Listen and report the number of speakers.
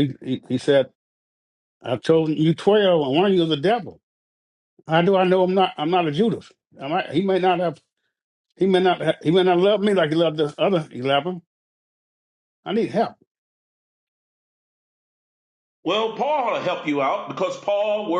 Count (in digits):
2